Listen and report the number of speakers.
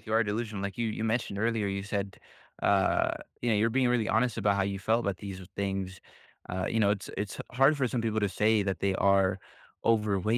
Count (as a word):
one